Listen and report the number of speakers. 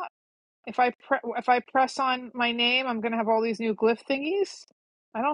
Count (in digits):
1